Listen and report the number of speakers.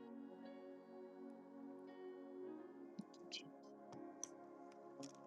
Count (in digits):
0